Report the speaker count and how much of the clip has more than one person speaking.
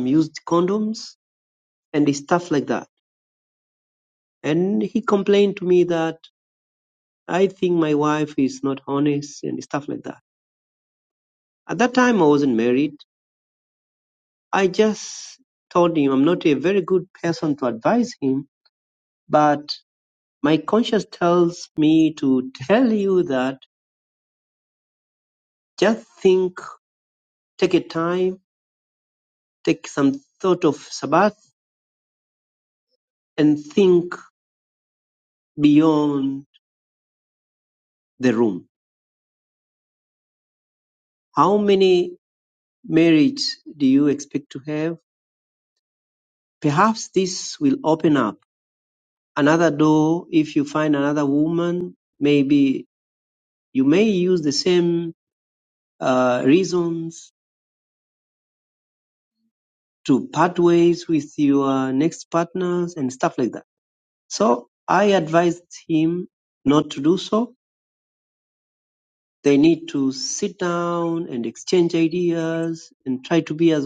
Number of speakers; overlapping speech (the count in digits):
1, no overlap